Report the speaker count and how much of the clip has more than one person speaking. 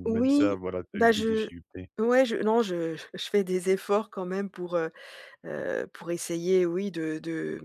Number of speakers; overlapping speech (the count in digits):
2, about 14%